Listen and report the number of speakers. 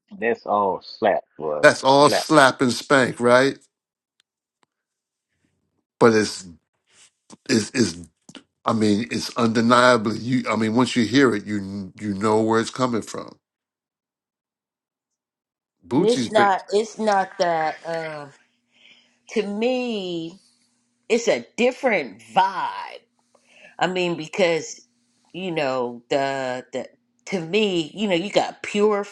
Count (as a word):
three